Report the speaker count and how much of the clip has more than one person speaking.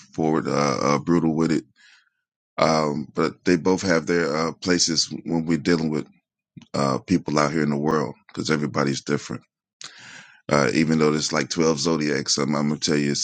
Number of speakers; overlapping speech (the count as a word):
one, no overlap